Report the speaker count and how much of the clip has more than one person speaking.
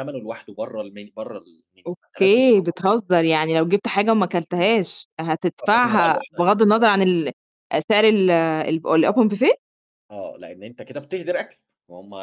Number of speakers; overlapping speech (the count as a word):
two, about 15%